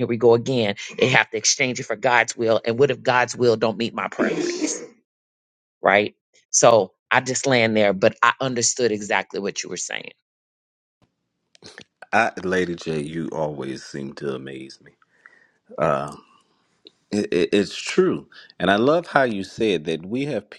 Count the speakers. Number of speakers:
two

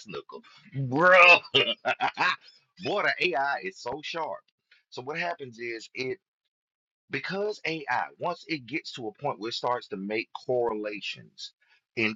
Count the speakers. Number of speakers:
one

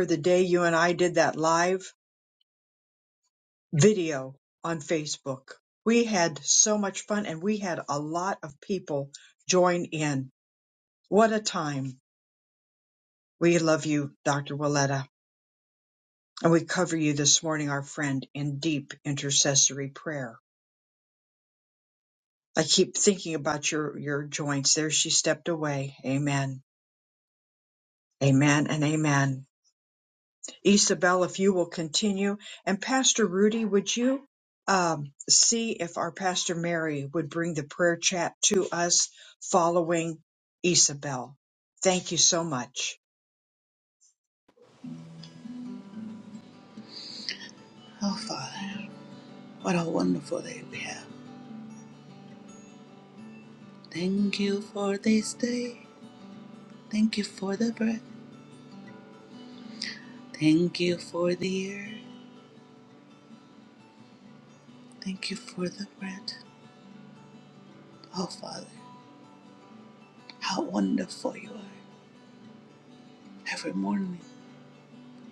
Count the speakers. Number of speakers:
two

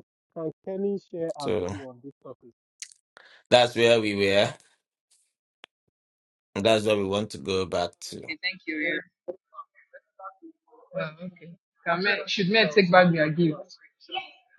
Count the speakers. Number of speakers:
three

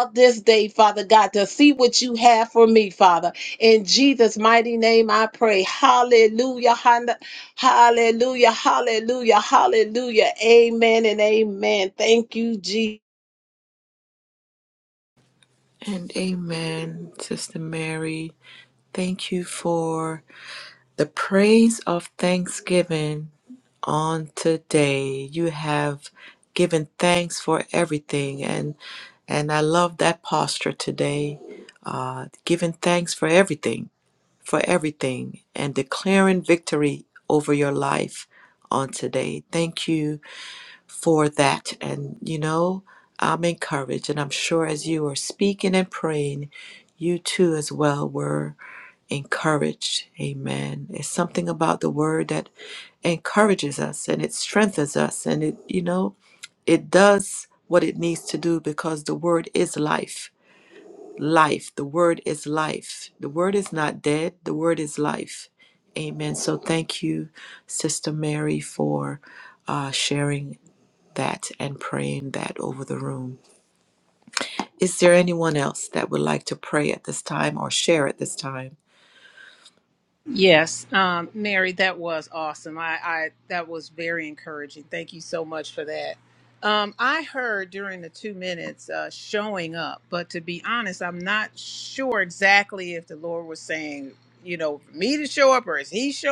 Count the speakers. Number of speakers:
three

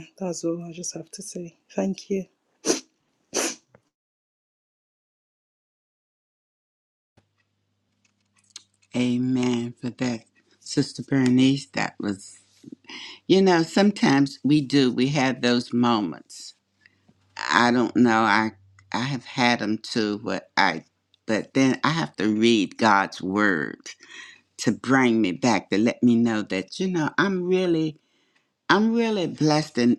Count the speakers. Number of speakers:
two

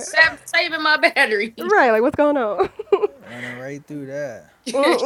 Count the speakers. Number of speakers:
three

